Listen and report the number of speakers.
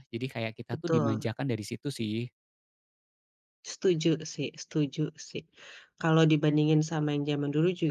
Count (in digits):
2